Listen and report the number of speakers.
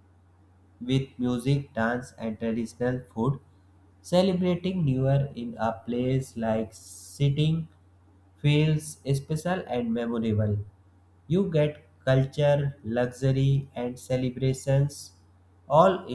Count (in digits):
1